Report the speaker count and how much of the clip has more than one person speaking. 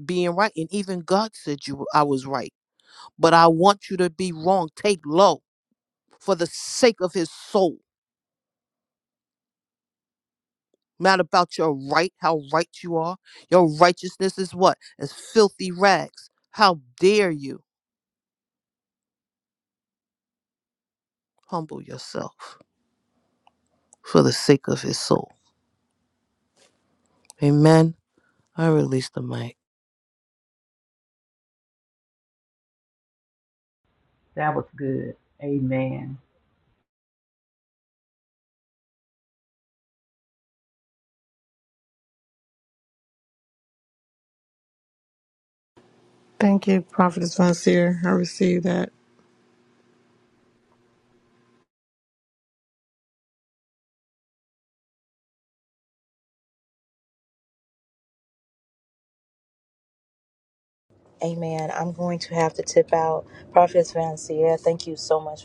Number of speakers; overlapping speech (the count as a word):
four, no overlap